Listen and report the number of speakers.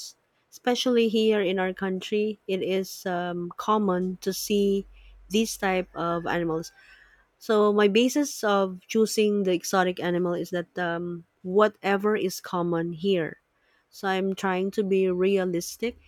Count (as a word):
one